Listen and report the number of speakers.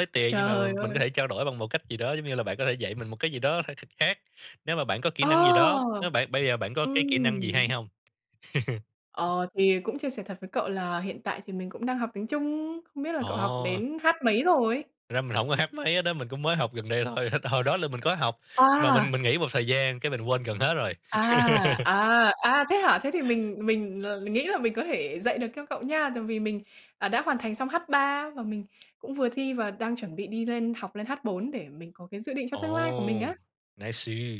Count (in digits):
2